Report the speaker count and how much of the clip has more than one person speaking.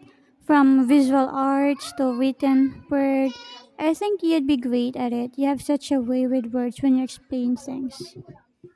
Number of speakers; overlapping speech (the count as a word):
one, no overlap